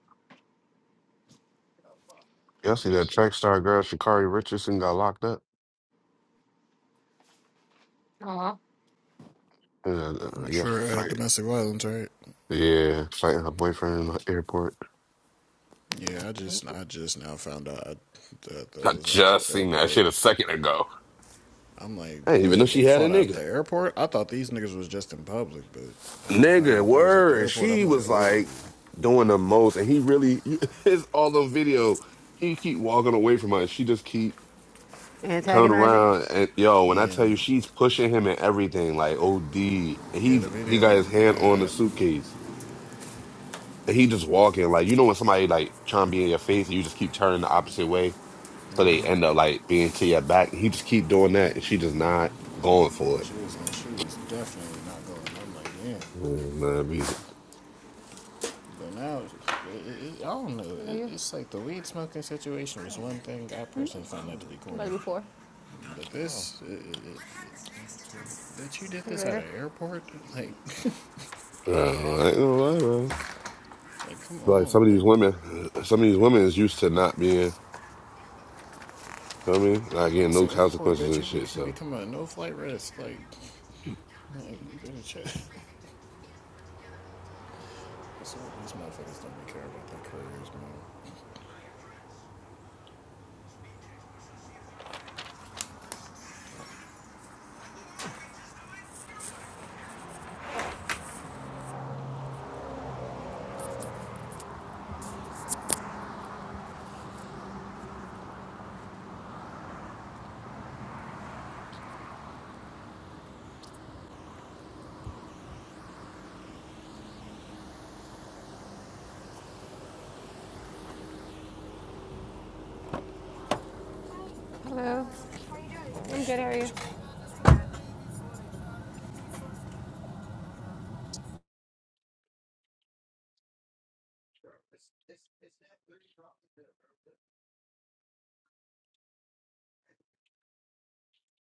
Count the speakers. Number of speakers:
three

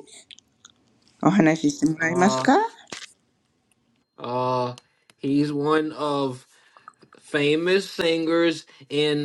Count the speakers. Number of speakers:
two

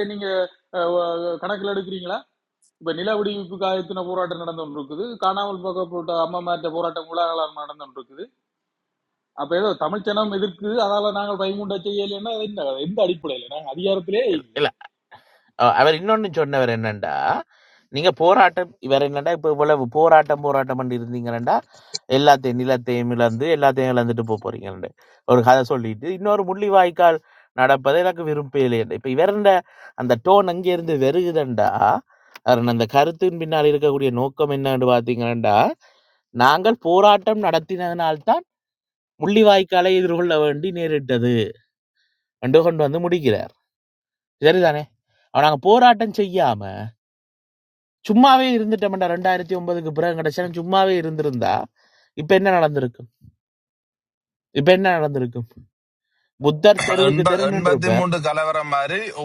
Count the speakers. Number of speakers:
three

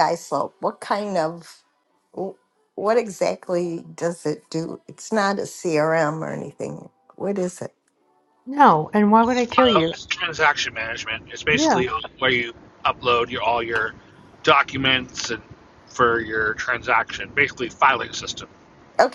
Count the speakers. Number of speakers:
three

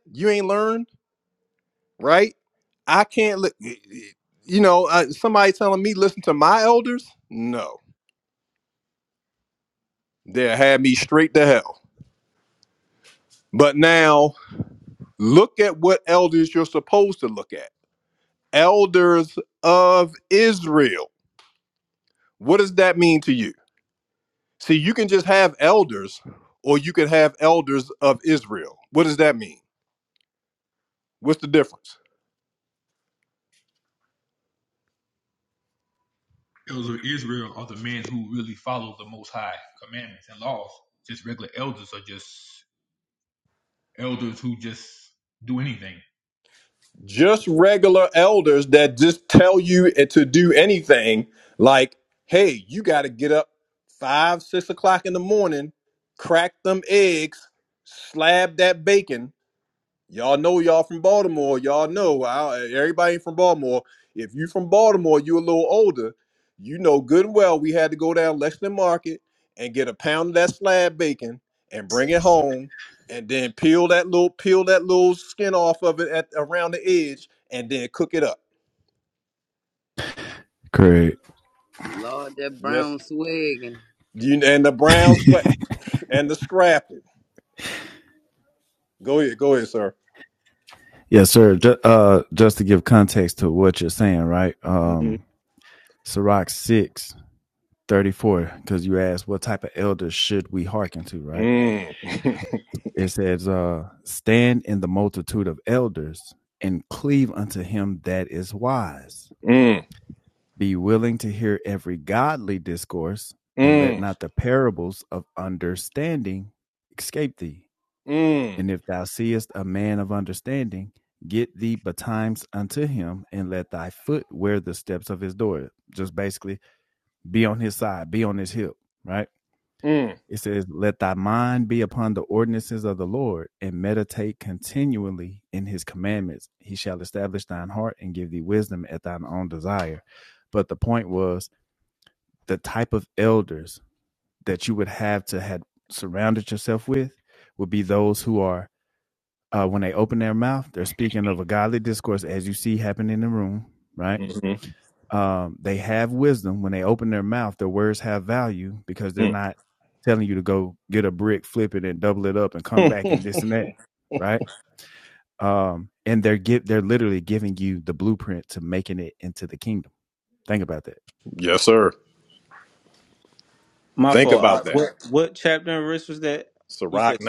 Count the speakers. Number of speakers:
five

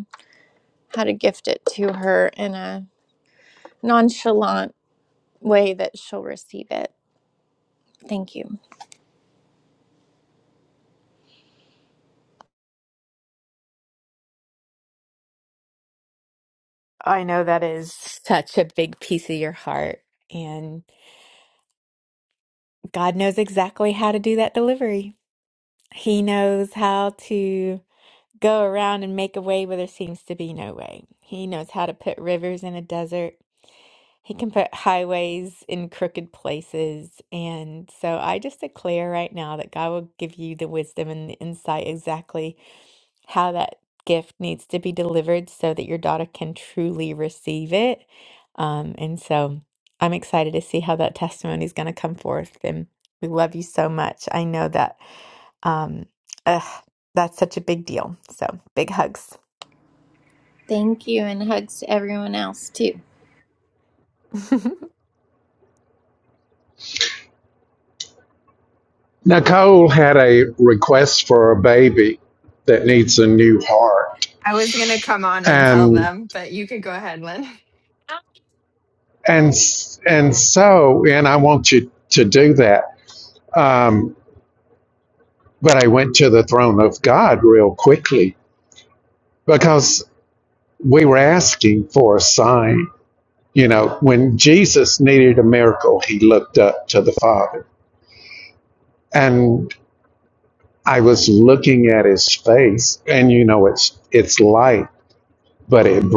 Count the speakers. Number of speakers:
four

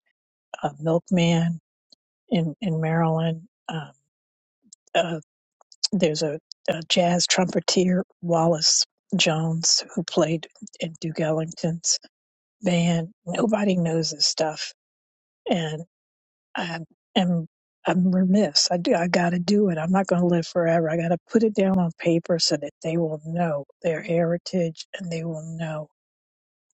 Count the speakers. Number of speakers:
one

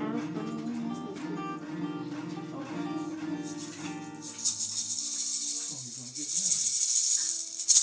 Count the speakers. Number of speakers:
zero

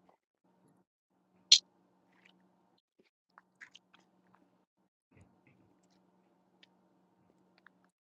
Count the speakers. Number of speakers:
zero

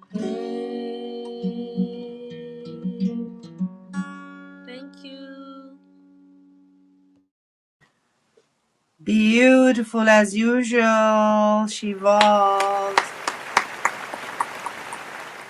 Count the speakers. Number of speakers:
two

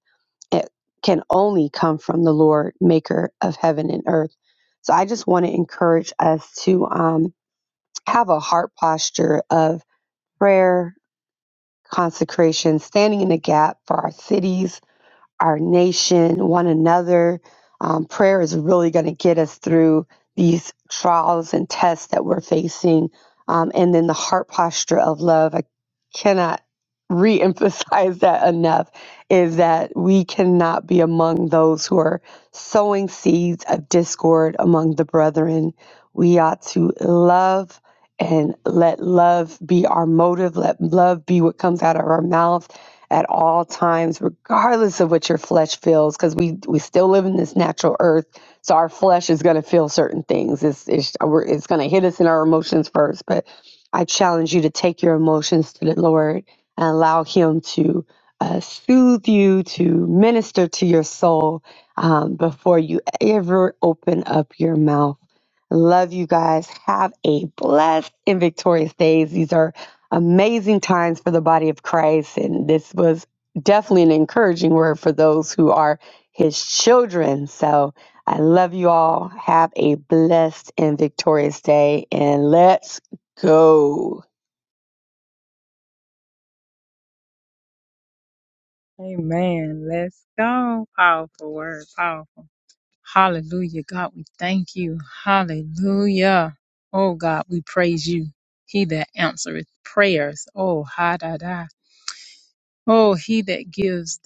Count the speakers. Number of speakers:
two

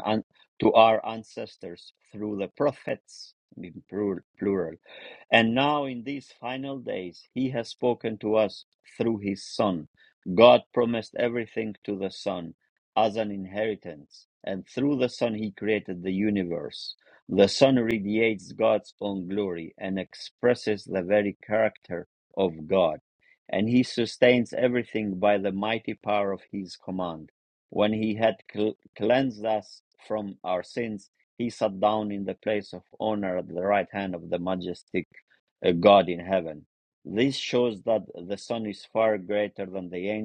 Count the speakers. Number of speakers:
one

